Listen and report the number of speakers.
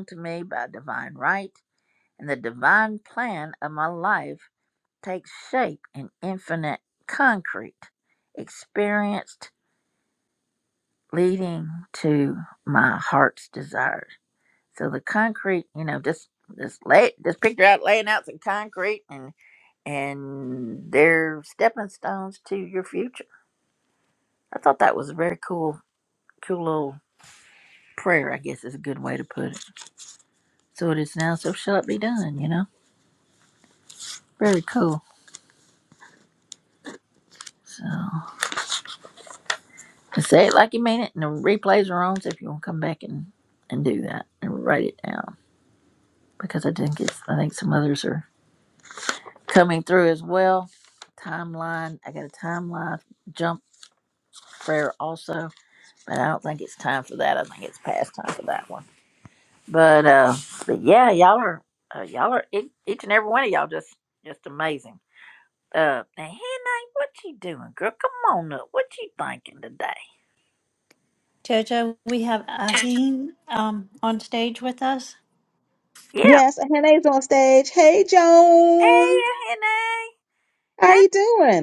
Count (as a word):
three